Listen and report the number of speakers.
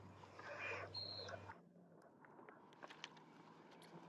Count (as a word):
zero